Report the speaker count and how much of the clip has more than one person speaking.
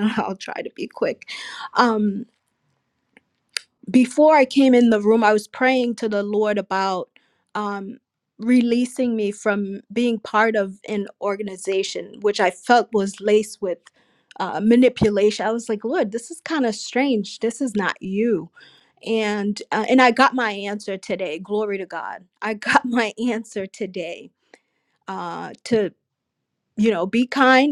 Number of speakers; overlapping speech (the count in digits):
1, no overlap